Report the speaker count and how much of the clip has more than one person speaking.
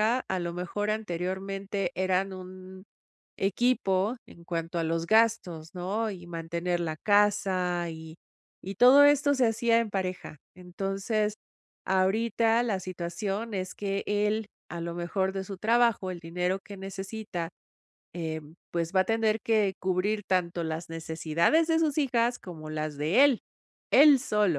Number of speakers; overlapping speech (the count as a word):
one, no overlap